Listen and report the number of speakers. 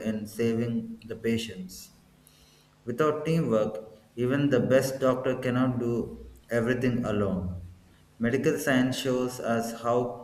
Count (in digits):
1